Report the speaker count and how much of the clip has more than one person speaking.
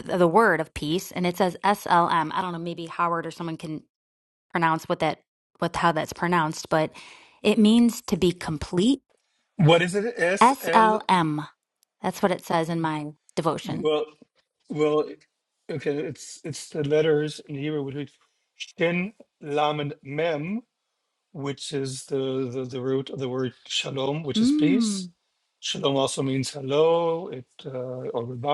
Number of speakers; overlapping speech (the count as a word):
two, about 5%